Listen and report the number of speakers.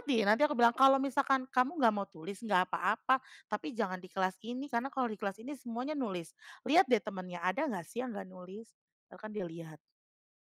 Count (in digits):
1